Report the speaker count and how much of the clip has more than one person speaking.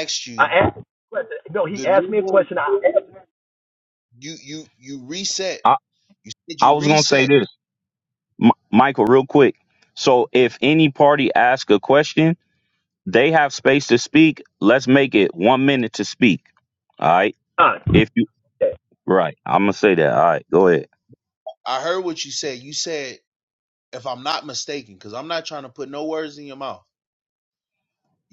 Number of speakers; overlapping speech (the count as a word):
three, about 6%